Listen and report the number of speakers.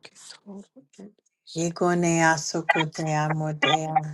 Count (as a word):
two